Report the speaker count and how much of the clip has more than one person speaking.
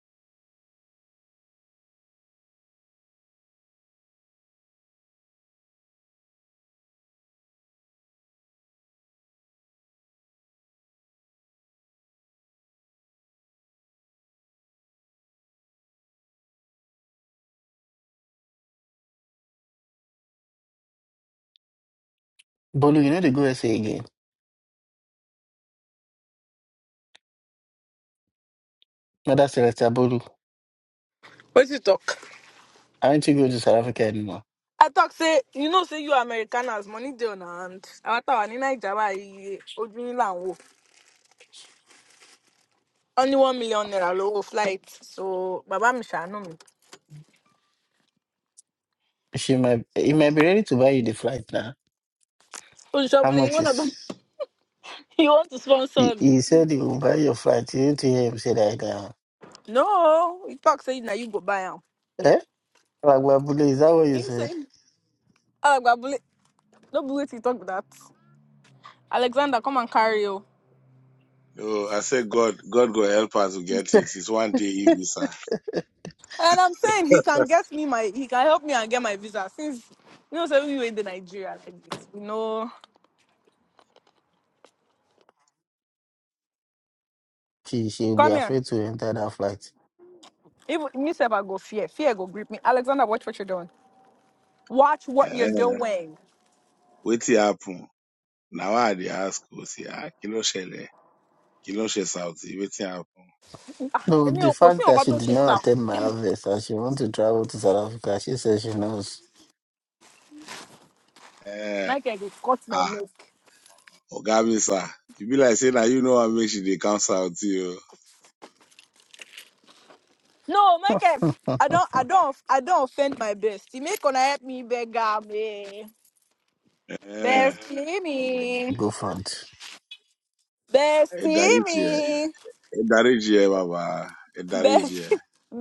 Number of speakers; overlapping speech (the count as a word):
three, about 4%